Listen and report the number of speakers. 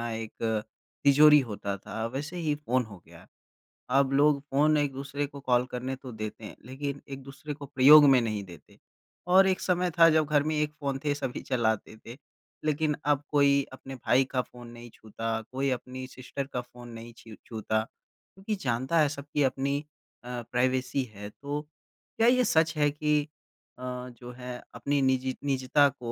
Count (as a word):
one